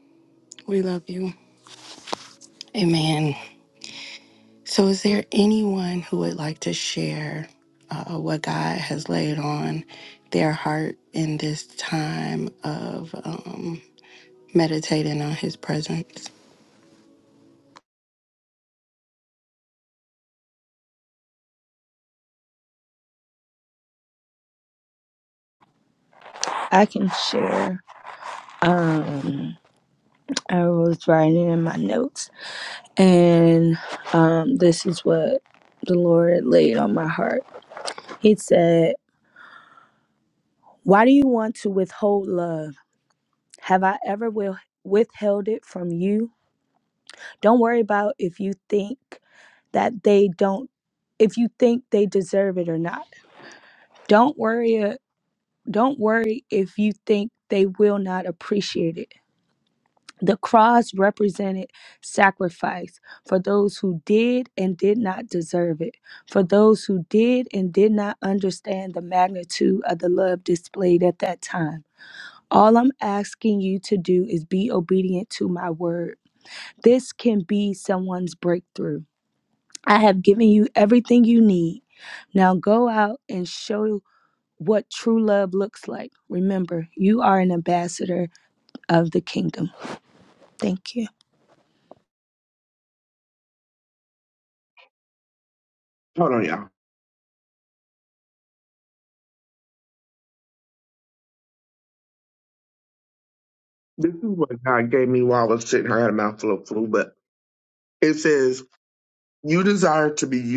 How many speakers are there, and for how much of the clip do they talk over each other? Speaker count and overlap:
3, no overlap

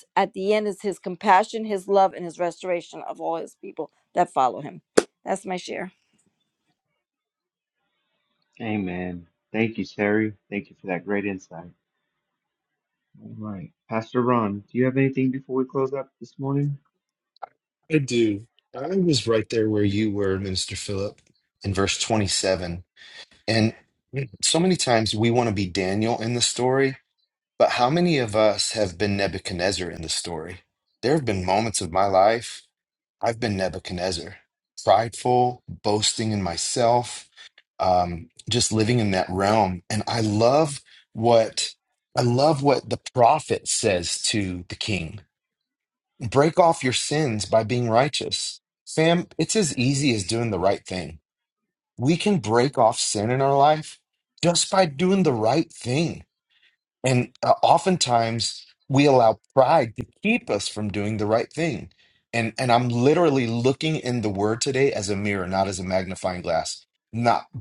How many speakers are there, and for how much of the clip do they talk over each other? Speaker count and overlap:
3, no overlap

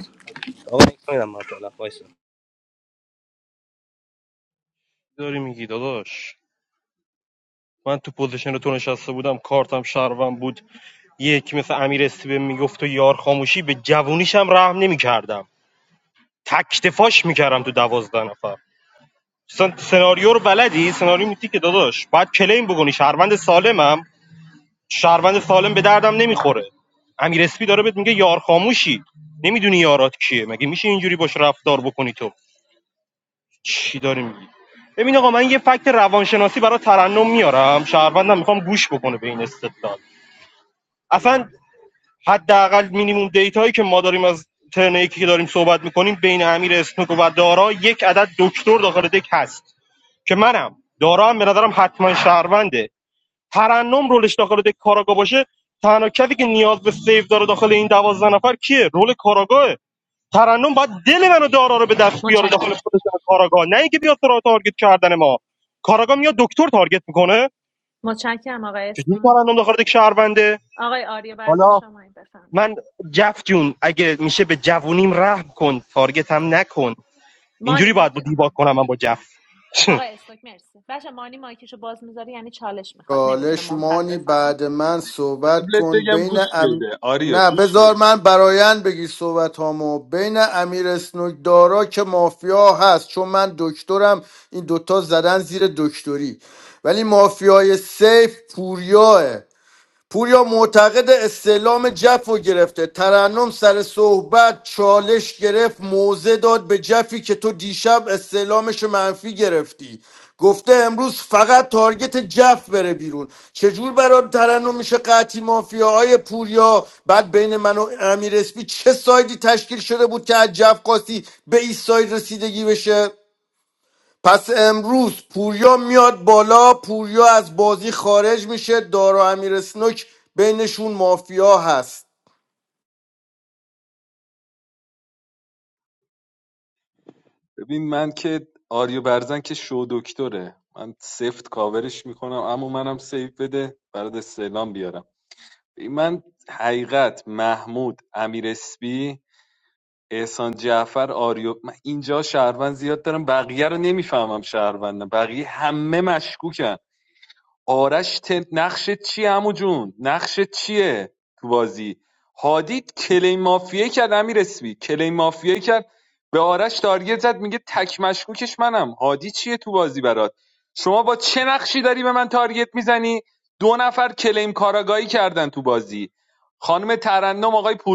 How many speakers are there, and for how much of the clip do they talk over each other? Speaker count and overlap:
5, about 3%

